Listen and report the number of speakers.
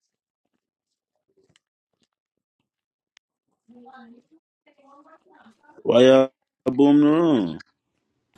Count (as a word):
one